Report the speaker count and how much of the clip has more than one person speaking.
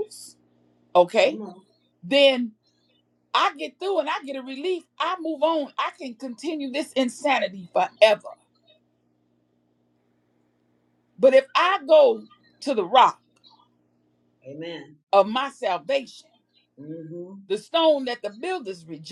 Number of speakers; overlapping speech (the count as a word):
two, about 1%